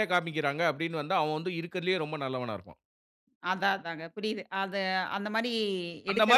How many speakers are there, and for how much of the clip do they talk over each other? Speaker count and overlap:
two, about 5%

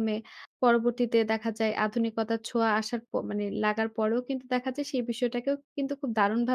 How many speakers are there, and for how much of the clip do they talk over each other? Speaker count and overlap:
one, no overlap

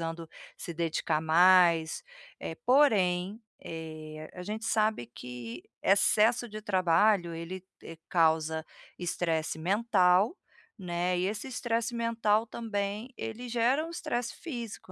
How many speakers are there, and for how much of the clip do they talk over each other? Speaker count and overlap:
one, no overlap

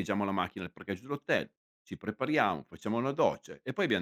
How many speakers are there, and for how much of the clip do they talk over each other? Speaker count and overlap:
one, no overlap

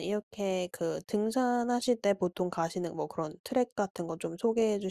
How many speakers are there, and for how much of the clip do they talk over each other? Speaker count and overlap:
one, no overlap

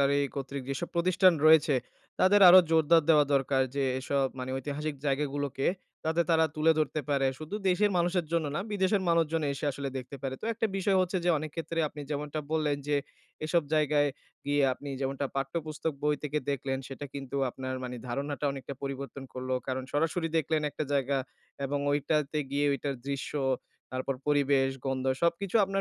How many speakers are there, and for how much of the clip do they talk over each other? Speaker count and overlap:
one, no overlap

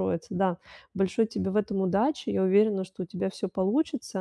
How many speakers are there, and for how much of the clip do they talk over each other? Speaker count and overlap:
one, no overlap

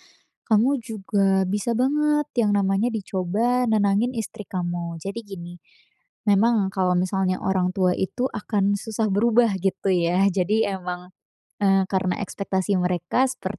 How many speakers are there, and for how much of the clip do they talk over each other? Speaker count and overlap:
one, no overlap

